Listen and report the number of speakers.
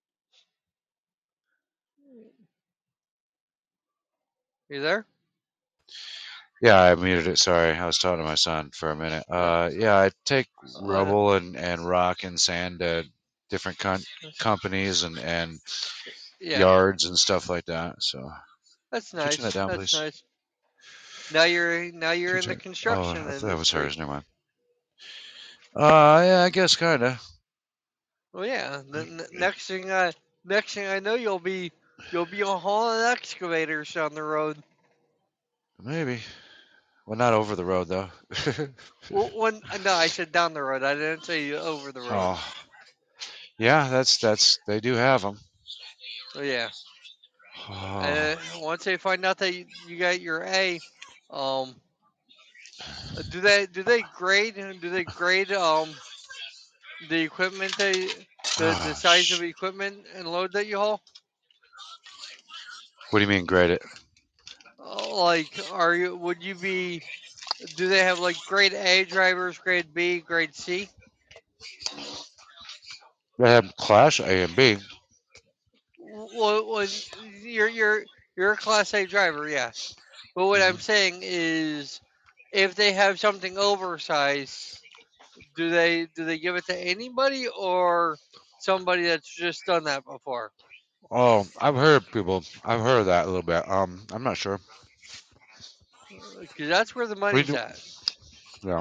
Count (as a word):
two